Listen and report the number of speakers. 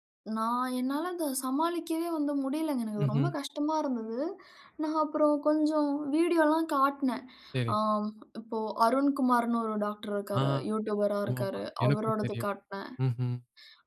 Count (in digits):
2